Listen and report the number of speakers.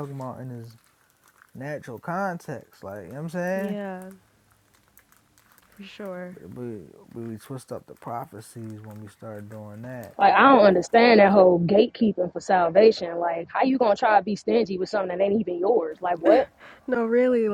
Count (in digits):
3